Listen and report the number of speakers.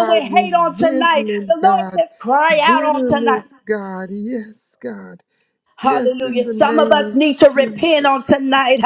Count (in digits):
2